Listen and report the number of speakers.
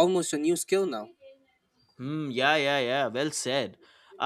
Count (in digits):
2